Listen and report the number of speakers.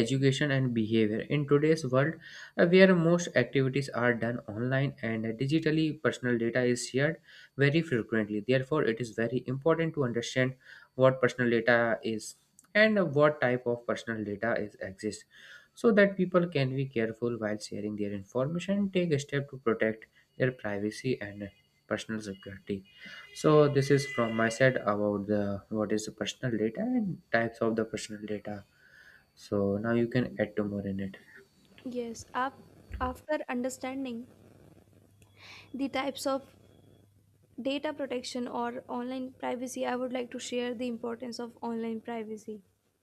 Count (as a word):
two